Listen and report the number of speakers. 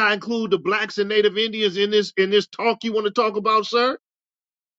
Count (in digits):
1